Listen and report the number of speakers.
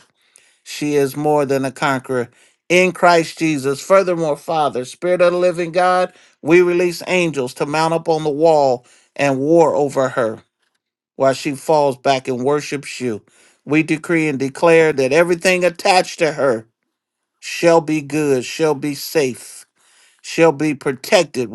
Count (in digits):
1